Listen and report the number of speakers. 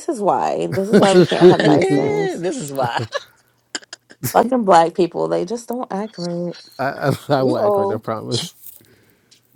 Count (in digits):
3